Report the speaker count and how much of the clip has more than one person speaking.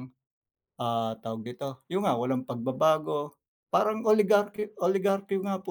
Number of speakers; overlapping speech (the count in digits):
1, no overlap